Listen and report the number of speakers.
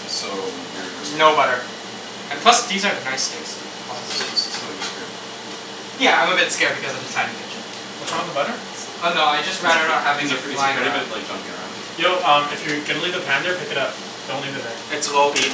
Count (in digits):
3